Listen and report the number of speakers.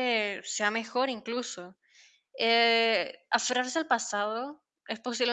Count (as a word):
one